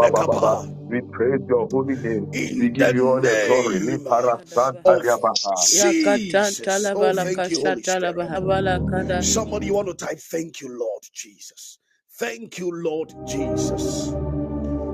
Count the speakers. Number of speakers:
3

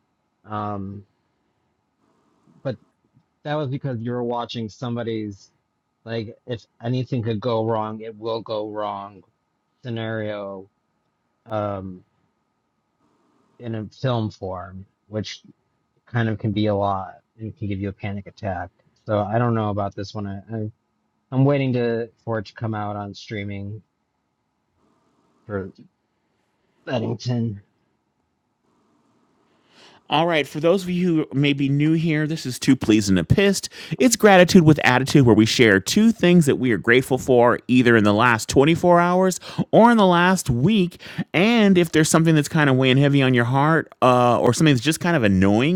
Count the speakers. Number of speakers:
2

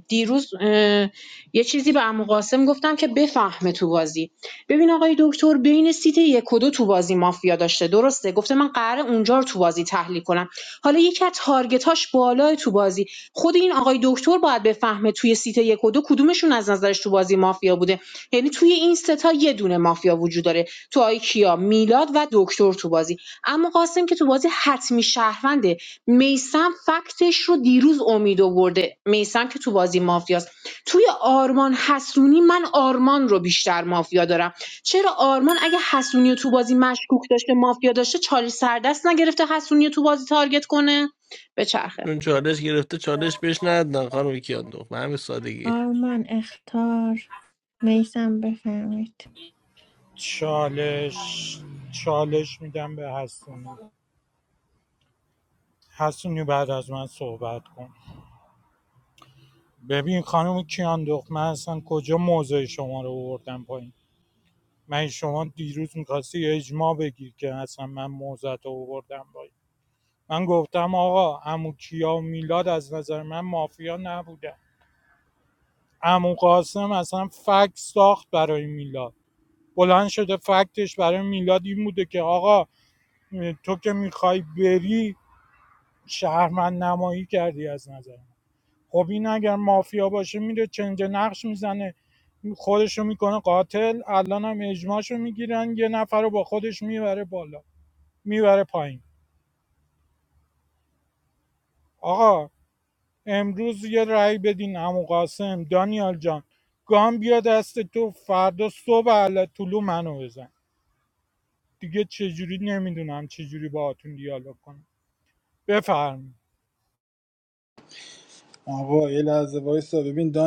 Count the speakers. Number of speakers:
5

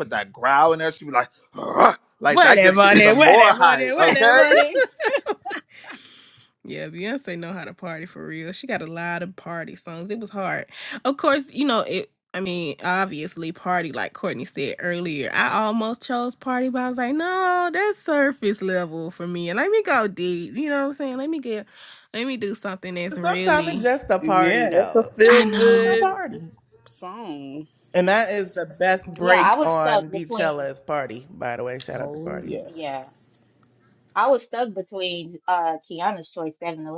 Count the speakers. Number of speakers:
5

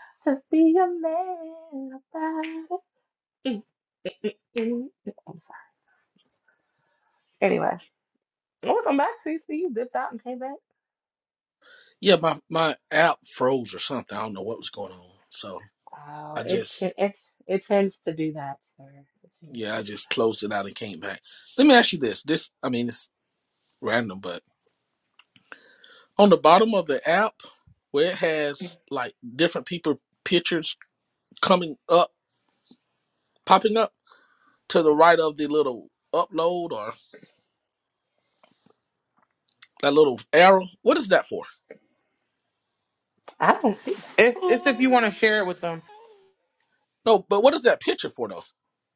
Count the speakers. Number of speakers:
3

